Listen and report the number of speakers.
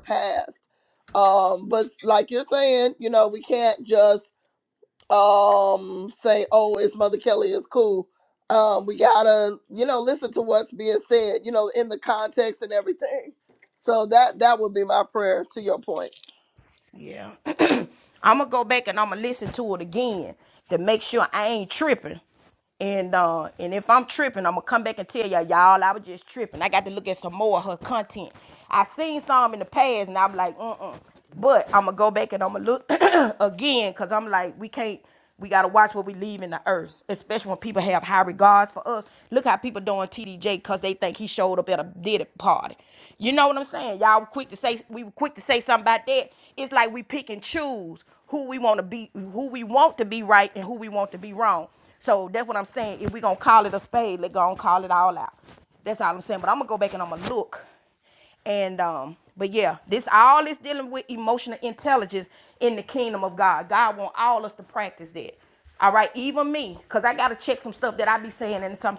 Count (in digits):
2